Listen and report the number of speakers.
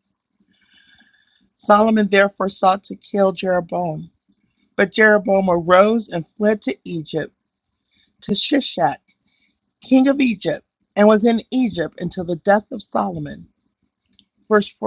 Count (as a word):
one